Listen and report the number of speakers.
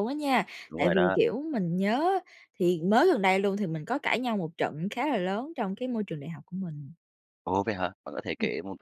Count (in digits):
2